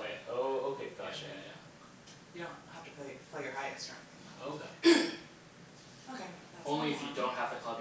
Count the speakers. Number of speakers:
three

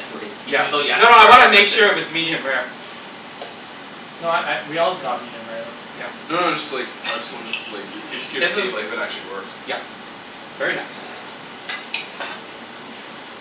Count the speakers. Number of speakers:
four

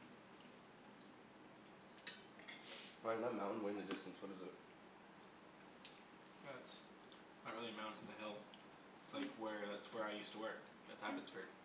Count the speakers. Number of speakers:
two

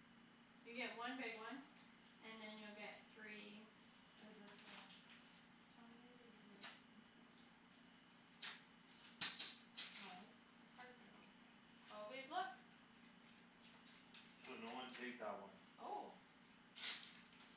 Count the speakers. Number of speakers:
three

